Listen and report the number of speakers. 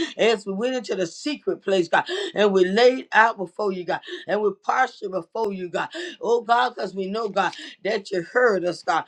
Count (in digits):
1